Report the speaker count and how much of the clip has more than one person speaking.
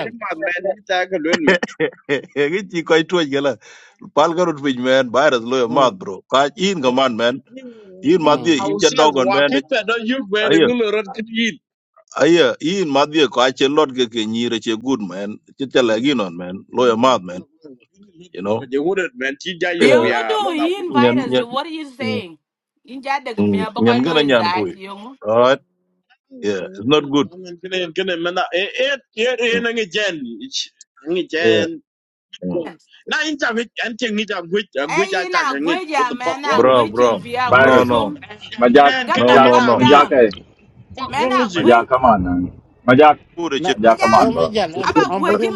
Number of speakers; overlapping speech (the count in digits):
5, about 27%